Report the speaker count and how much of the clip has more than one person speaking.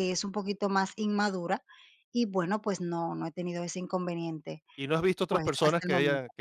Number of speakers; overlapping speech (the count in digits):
2, about 16%